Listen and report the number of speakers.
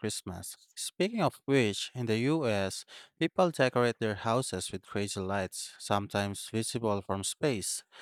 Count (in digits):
1